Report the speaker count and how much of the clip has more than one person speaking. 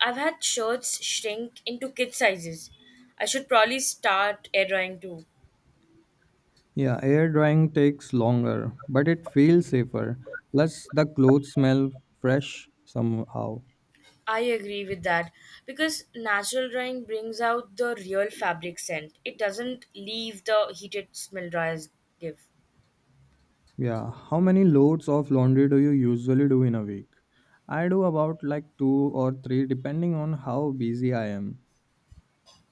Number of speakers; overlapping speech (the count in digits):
2, no overlap